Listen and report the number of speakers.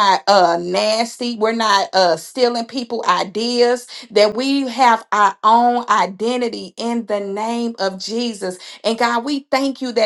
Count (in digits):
1